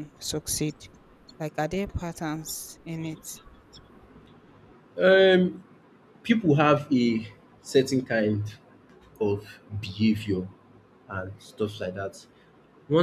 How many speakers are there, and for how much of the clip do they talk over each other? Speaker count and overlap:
2, no overlap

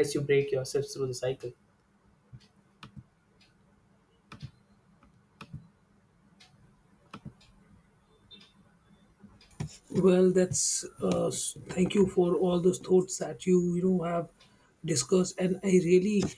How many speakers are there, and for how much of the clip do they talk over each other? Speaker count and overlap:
2, no overlap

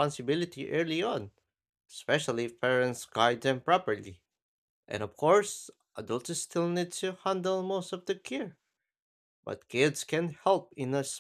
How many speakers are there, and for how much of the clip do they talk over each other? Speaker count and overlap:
1, no overlap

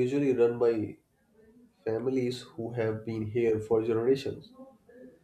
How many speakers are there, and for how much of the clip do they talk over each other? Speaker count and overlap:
1, no overlap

